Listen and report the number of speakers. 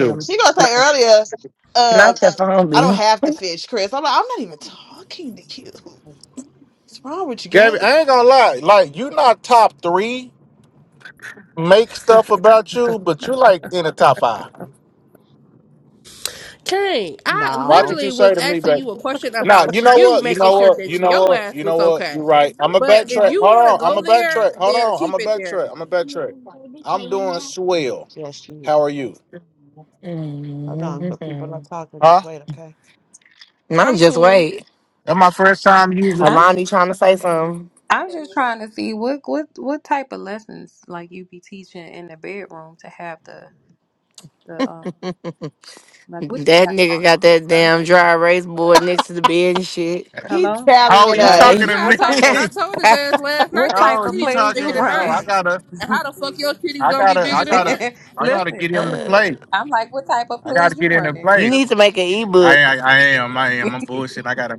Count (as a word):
five